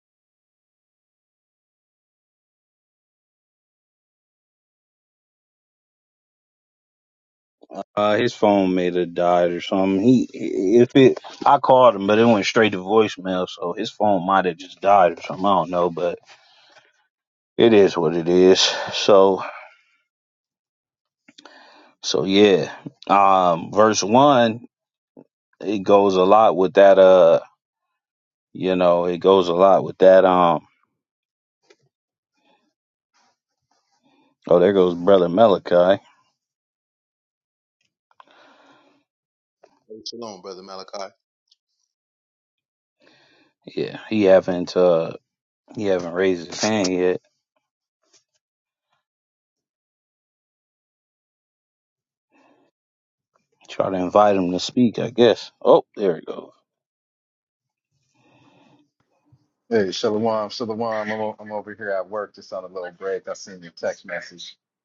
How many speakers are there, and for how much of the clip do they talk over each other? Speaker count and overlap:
three, no overlap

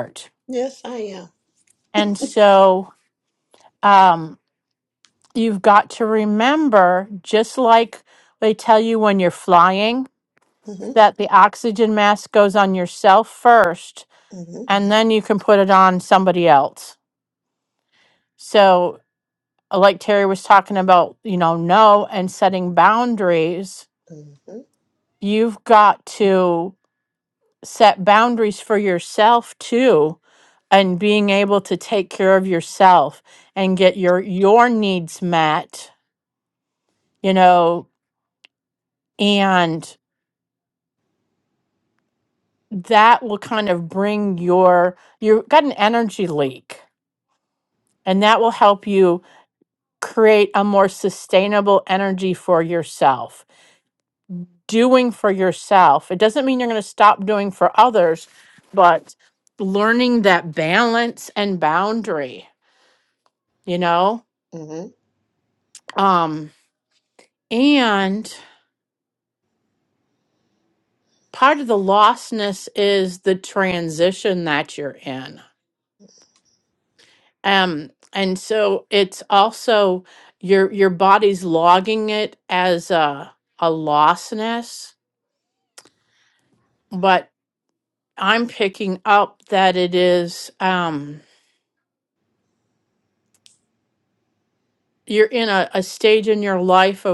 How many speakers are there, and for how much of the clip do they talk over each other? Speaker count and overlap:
two, under 1%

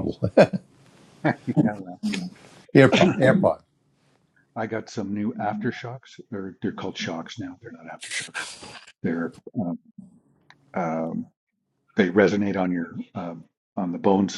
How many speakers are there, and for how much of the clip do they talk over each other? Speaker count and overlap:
two, no overlap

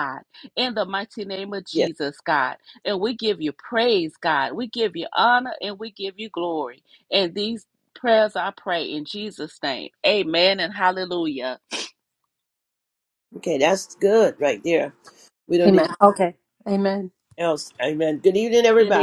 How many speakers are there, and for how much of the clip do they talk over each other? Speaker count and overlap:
three, about 3%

